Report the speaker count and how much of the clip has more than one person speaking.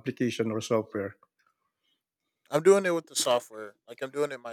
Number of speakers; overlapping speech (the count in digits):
2, no overlap